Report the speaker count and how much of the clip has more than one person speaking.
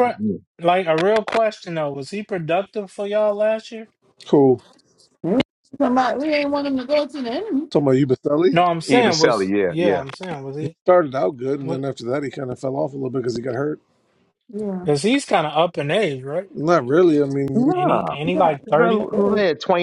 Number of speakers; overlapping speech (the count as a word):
four, about 15%